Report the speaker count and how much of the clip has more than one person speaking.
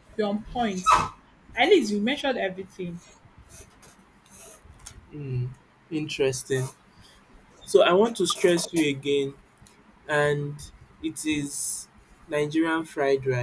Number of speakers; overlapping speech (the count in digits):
2, no overlap